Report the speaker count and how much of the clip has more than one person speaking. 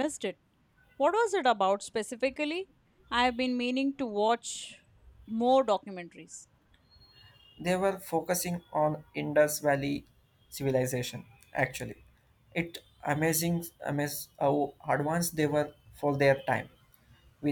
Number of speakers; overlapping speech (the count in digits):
2, no overlap